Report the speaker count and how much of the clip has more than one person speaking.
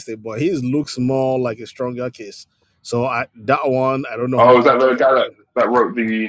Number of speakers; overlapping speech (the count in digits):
2, about 14%